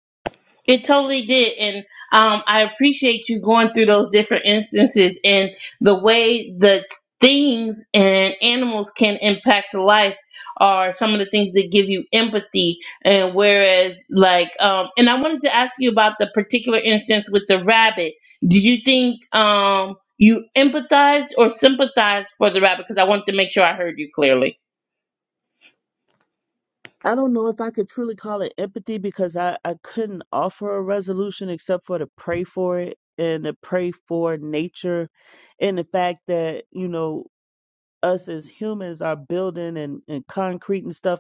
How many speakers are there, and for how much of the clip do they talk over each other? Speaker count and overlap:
2, no overlap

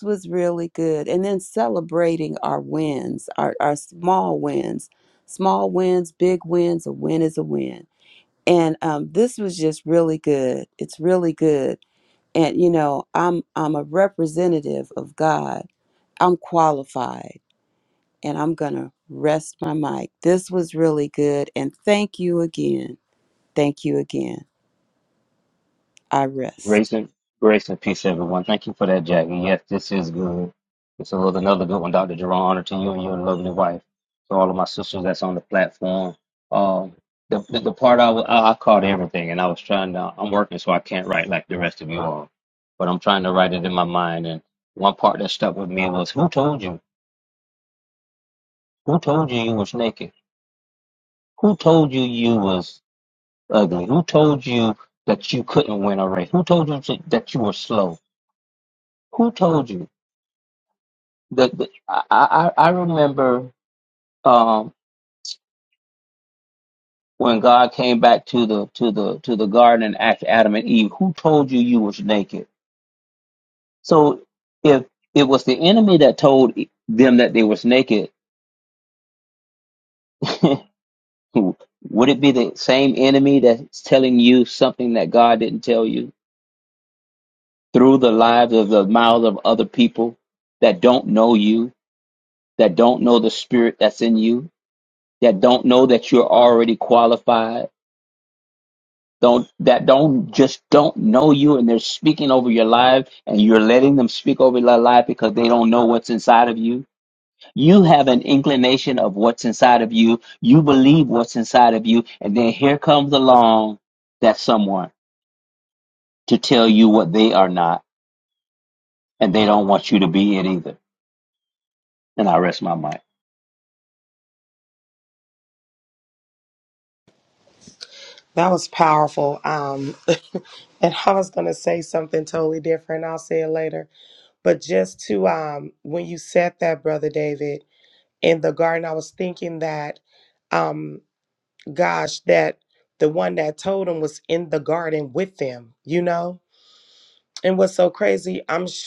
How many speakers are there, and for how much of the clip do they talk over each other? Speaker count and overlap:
3, no overlap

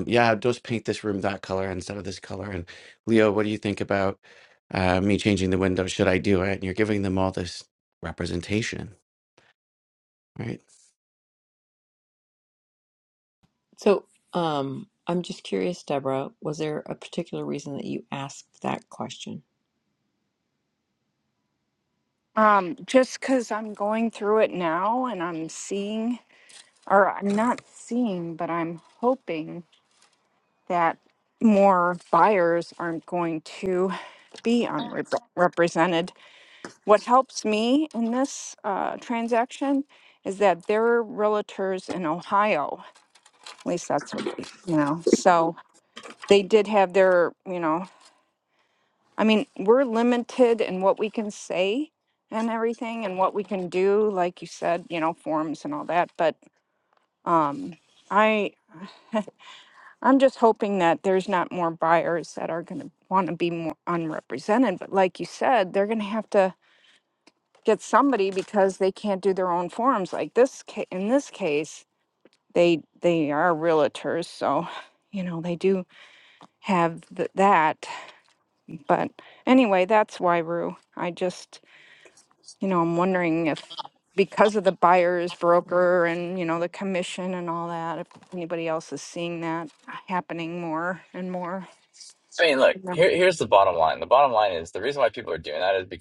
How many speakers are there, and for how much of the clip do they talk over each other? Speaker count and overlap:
4, no overlap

